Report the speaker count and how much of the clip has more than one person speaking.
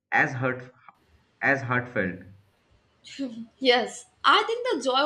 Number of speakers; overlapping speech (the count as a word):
two, no overlap